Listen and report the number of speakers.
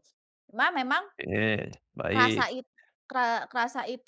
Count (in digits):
2